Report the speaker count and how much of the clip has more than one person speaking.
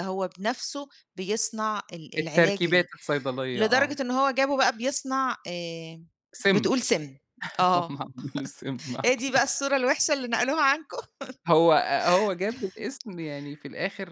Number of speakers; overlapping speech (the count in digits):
2, about 11%